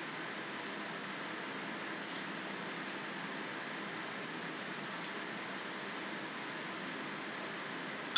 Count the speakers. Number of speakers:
zero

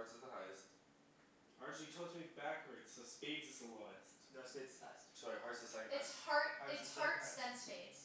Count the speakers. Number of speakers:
four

